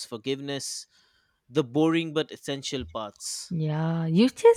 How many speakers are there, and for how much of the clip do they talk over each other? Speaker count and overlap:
2, no overlap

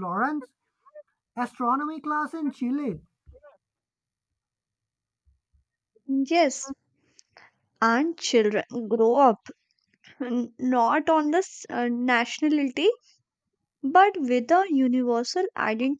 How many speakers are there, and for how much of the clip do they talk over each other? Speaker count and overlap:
2, no overlap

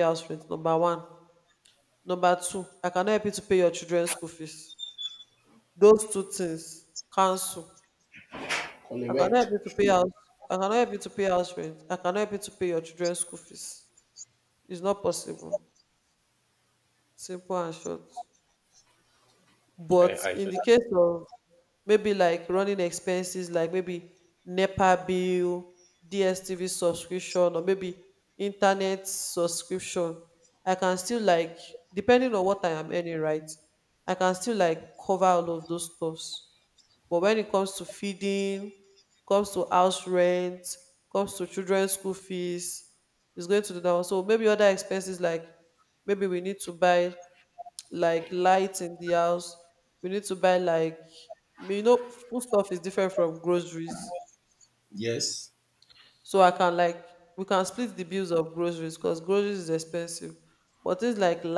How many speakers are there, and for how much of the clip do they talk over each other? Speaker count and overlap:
2, about 2%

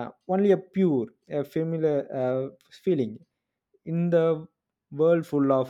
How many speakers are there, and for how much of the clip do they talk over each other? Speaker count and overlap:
1, no overlap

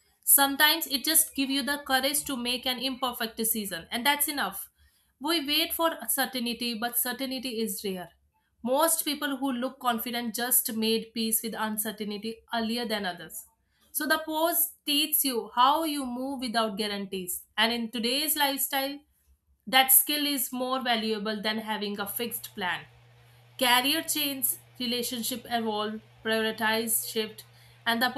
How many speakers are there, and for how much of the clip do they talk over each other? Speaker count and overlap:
1, no overlap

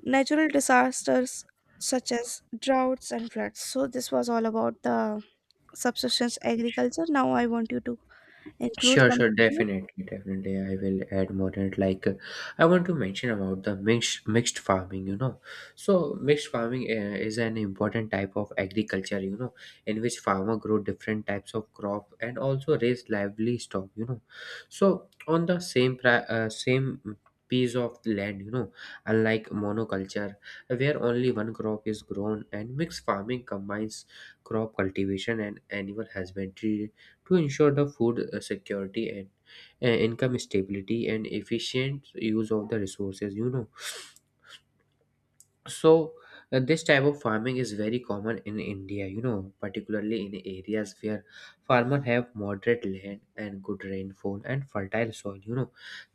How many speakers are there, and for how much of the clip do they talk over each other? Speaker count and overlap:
2, about 2%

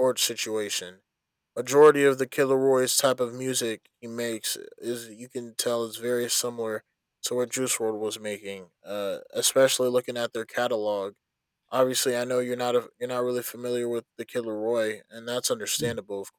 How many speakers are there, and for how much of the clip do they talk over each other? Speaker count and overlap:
1, no overlap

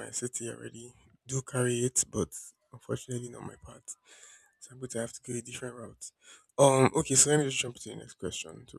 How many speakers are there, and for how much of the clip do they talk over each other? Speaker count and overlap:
1, no overlap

